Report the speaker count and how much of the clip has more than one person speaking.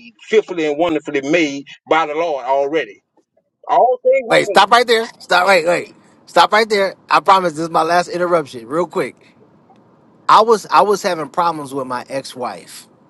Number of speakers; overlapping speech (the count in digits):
2, about 3%